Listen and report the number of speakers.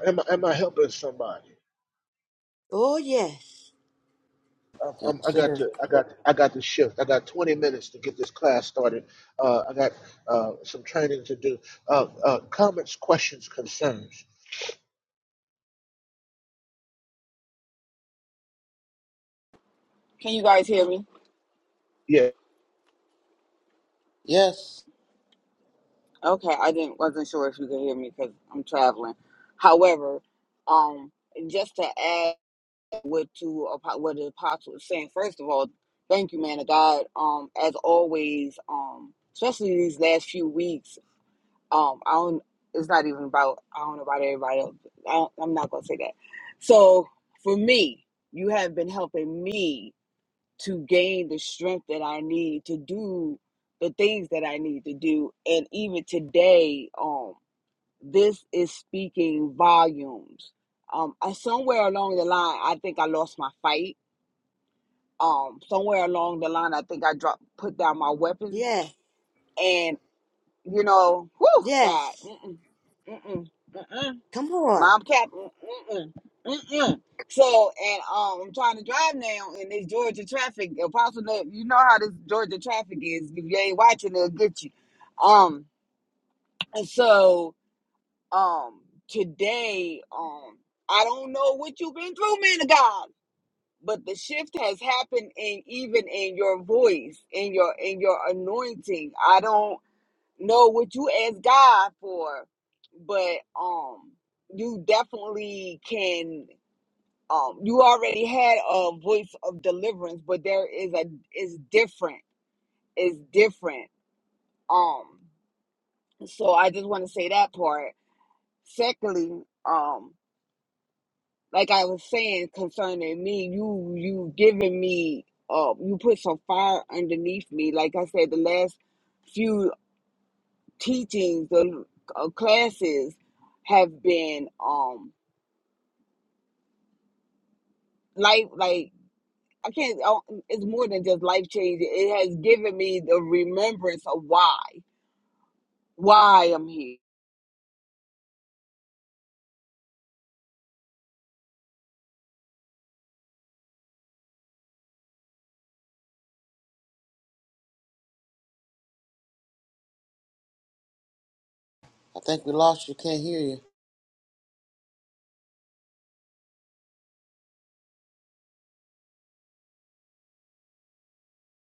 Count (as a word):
four